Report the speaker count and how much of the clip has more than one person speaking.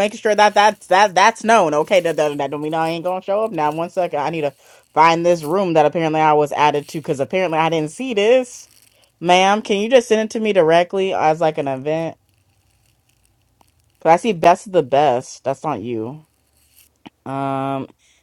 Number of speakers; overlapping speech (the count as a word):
one, no overlap